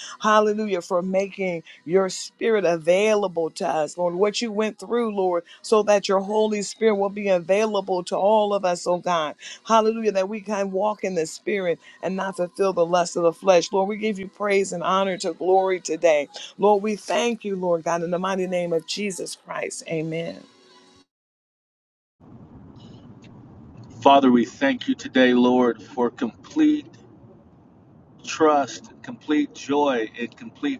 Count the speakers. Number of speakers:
two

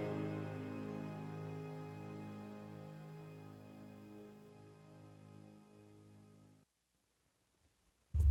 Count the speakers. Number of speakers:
zero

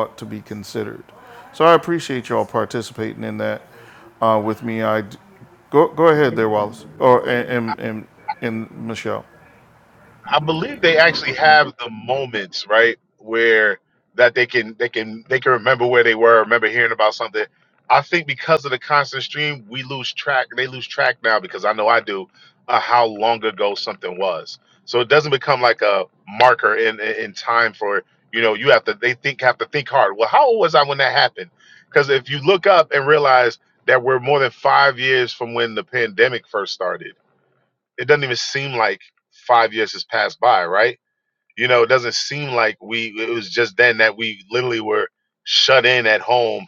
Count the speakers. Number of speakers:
two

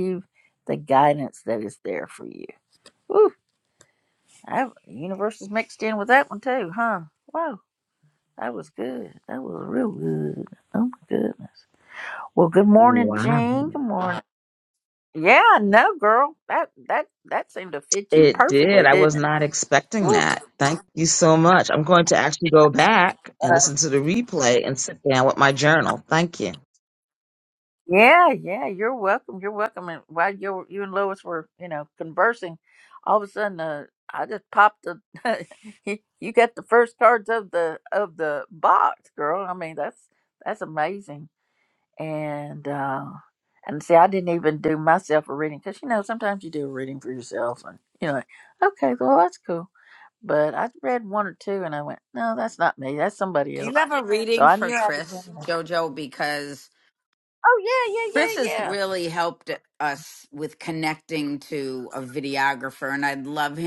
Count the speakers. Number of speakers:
three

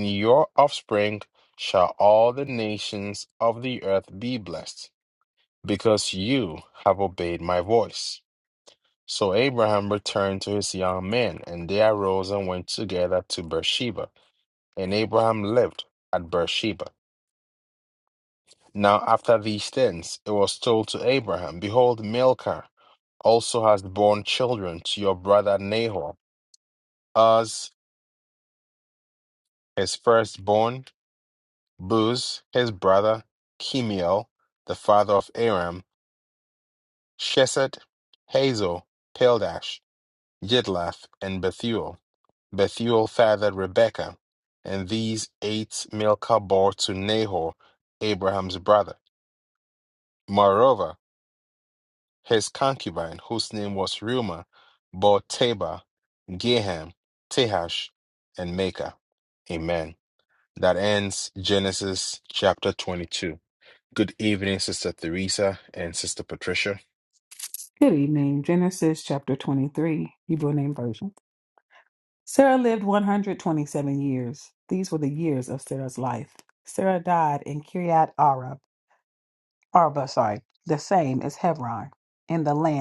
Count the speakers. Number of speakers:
two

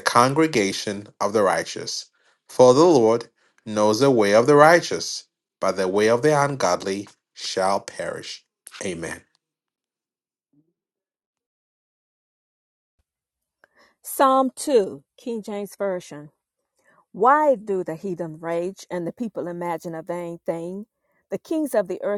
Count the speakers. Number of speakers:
two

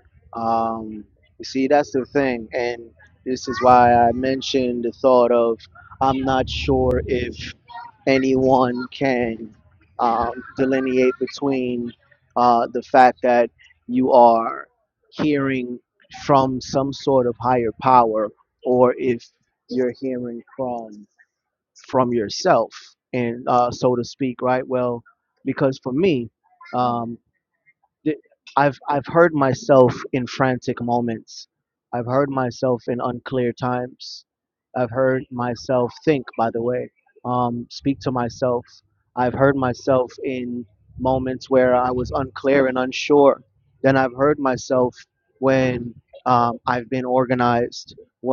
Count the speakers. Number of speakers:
one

